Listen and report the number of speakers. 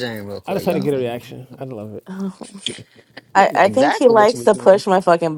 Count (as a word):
three